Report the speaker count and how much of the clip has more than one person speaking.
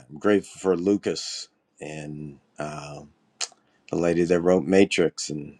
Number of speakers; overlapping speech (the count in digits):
1, no overlap